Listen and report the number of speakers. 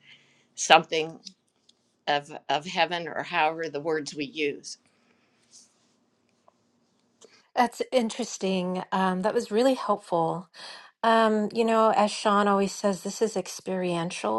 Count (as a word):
two